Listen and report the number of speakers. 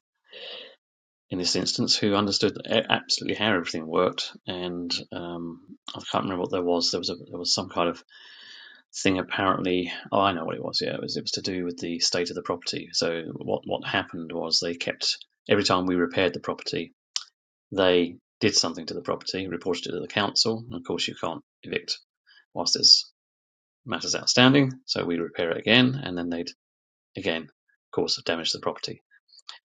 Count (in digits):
1